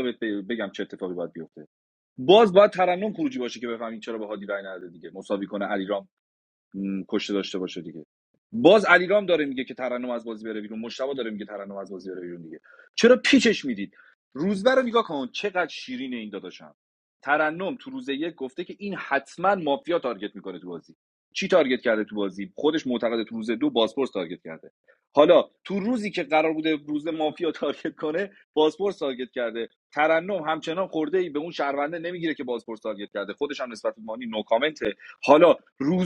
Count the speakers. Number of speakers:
1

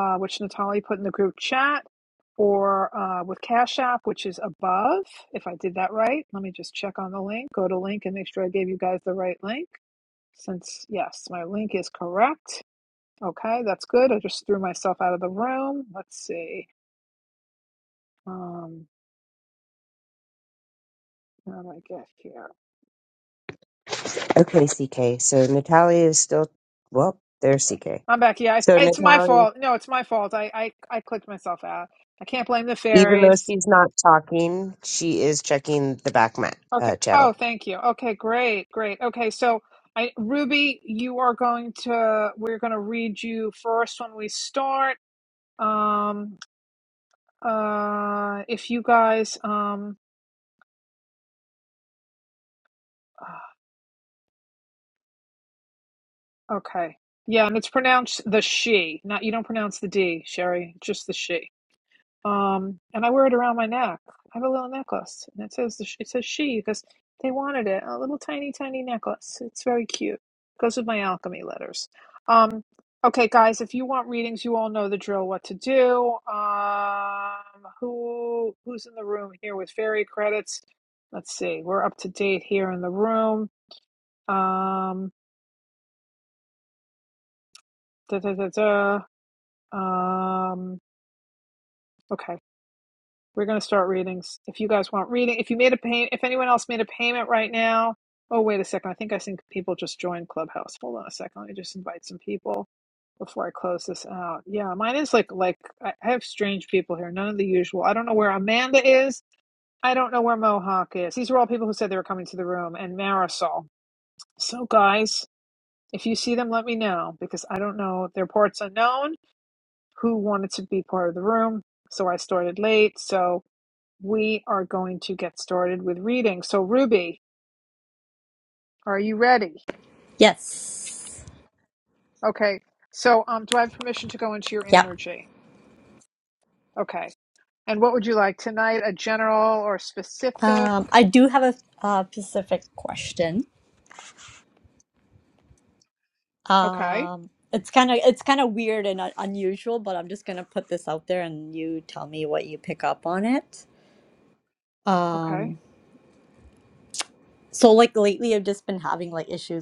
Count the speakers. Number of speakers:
3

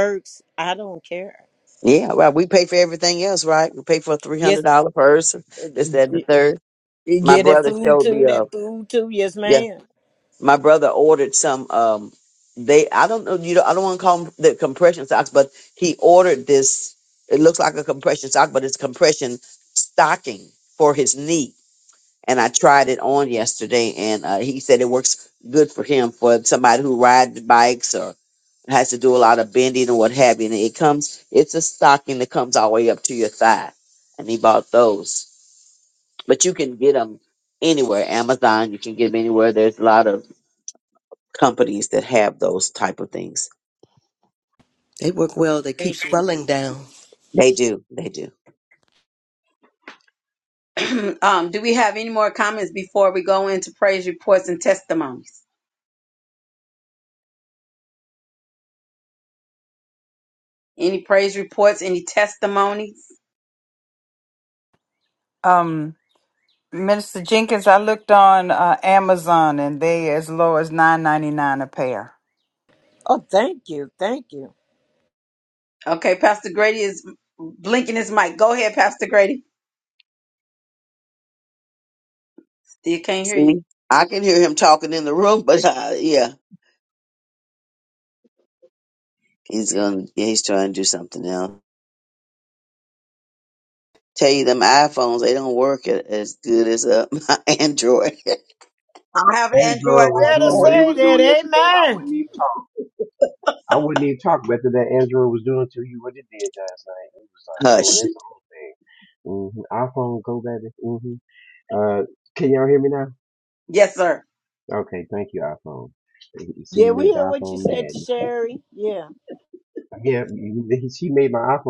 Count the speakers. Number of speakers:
6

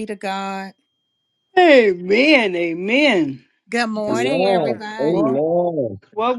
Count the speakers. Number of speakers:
3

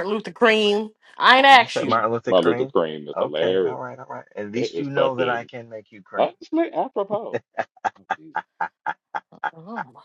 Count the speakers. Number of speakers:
3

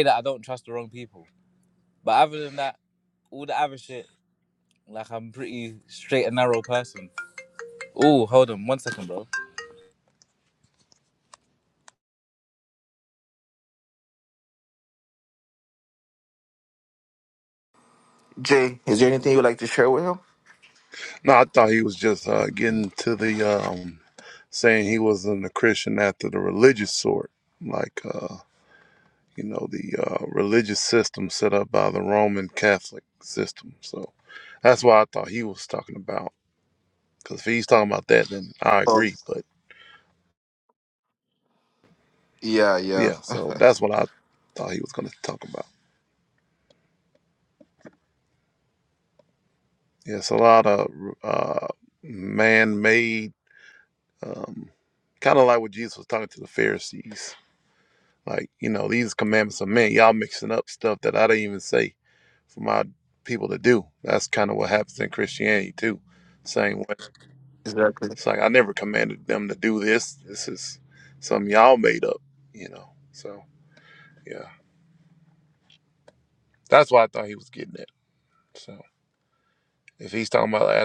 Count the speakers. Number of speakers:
3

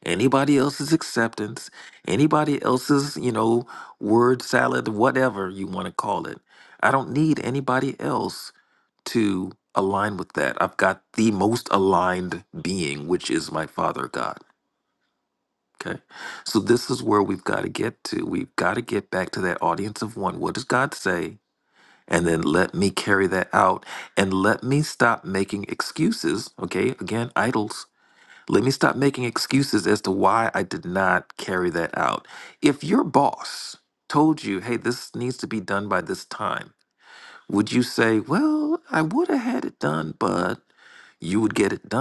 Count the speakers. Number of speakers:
1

